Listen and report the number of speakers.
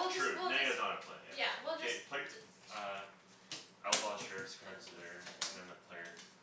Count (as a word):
two